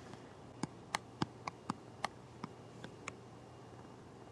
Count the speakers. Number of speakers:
0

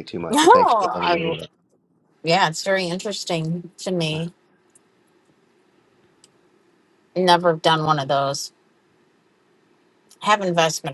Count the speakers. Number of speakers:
2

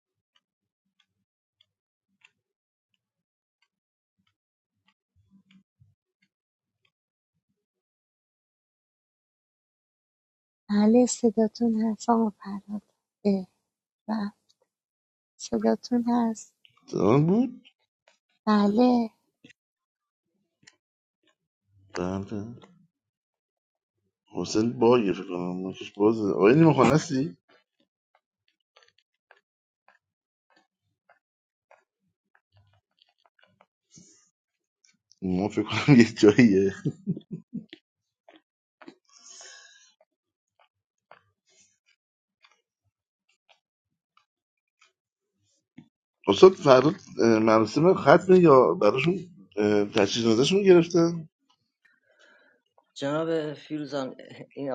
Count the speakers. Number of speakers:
3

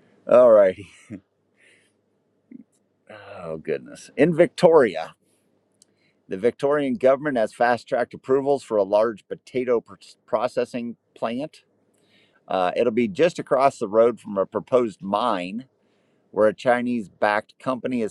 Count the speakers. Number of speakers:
1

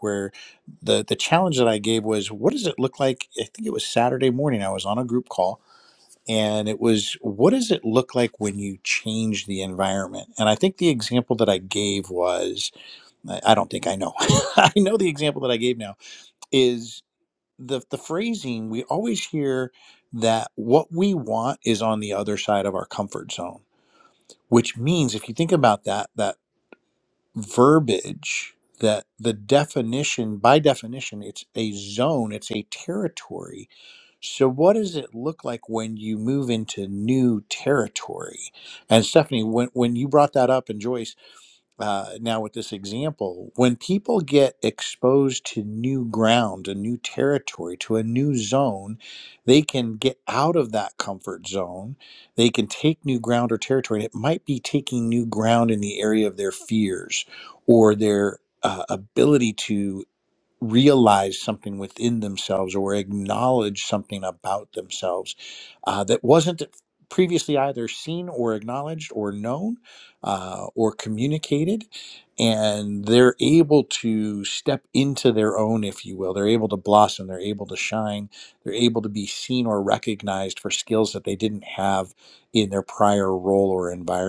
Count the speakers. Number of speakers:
1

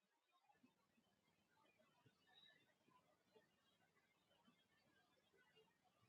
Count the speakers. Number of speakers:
0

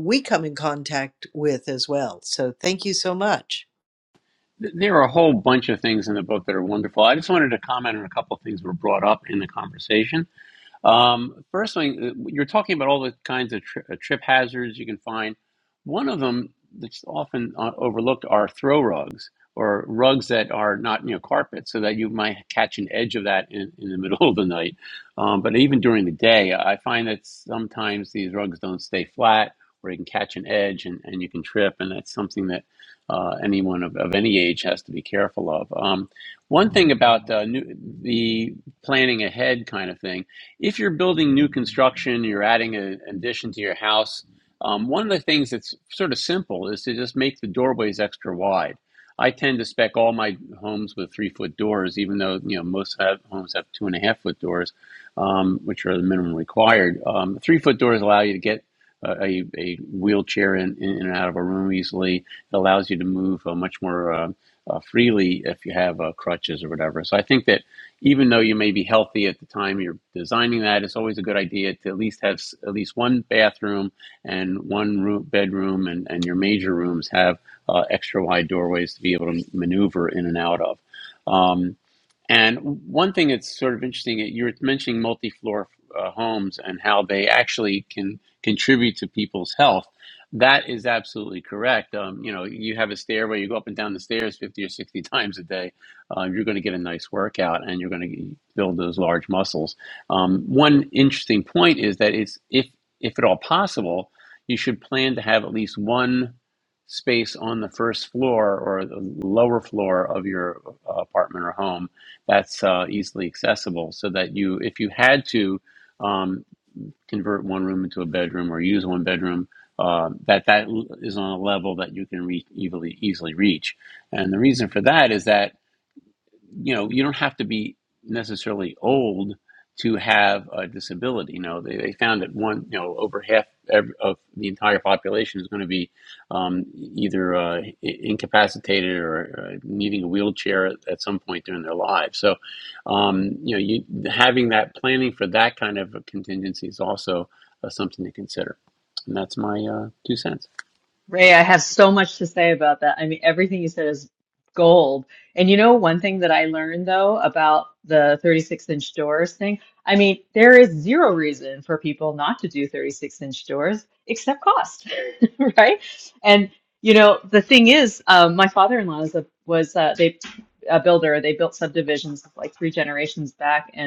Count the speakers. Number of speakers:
3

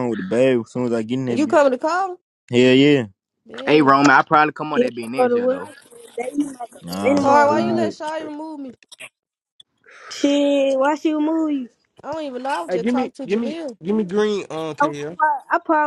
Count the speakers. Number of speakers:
5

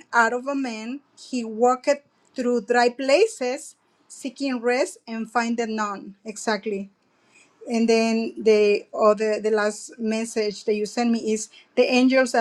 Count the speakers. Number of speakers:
1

